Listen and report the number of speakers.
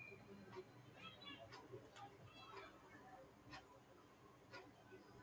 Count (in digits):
0